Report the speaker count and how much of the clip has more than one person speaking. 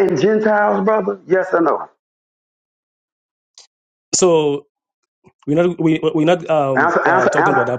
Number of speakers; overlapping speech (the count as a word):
two, about 13%